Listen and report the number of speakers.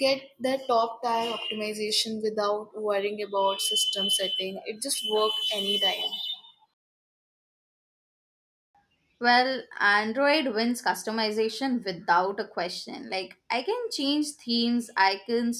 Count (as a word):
two